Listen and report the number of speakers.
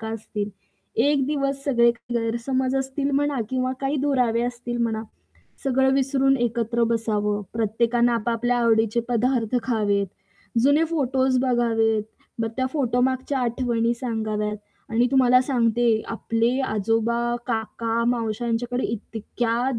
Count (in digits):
1